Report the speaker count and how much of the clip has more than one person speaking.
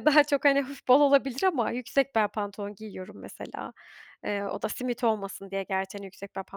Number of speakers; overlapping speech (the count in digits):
1, no overlap